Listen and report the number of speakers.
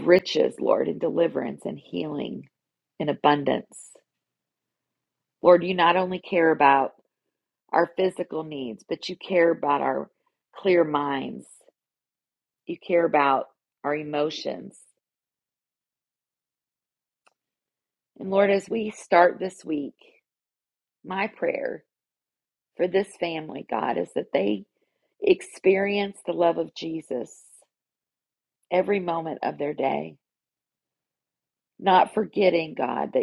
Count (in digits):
1